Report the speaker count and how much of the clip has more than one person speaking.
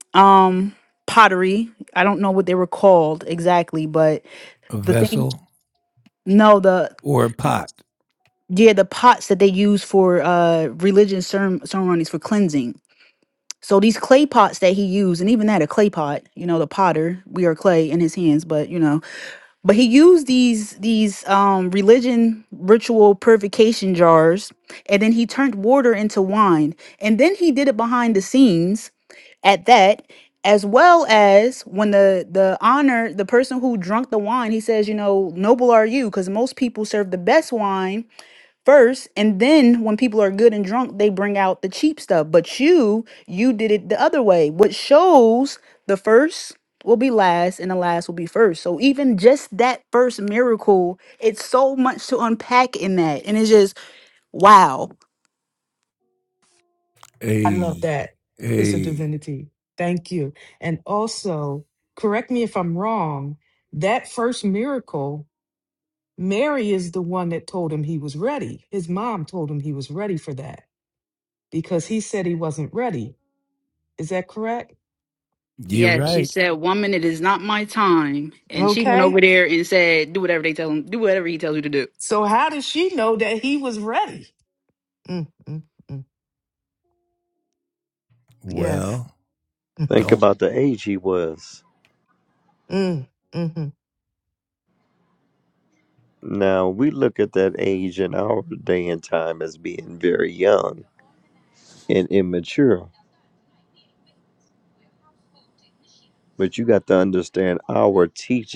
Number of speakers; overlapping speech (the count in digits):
4, about 3%